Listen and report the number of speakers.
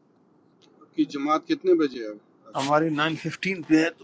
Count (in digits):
2